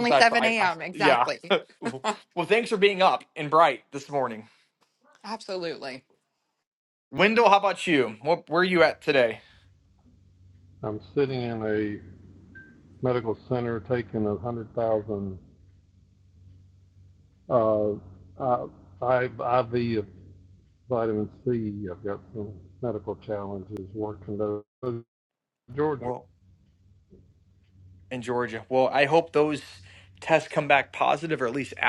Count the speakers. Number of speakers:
three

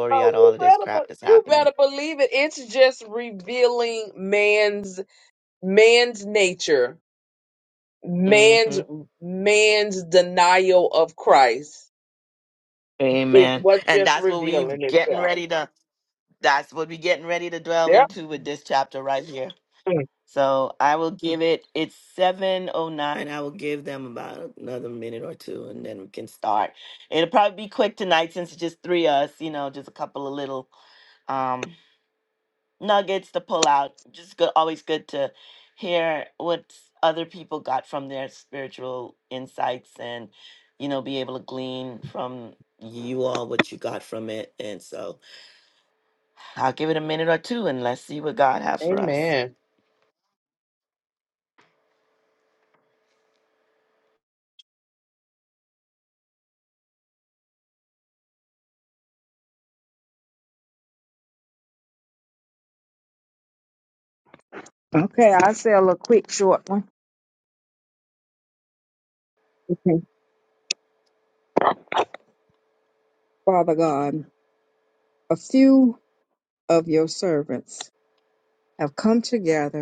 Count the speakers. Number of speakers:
three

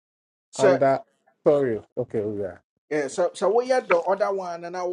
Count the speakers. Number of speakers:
two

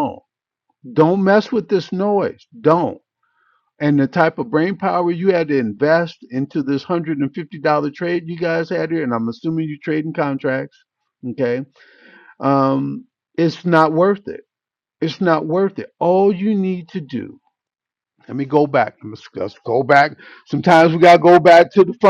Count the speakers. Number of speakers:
one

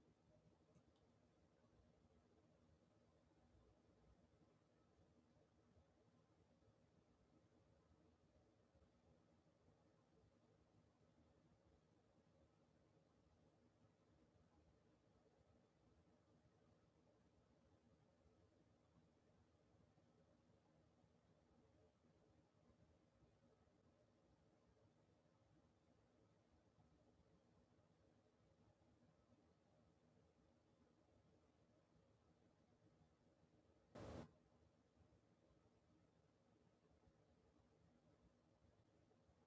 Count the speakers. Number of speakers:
zero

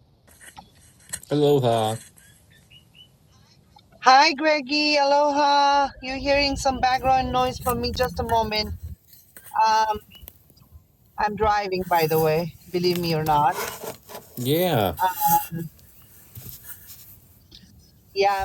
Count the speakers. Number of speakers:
two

